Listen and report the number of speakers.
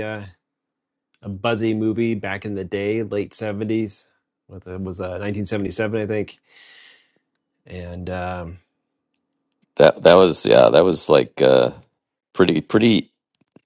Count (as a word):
two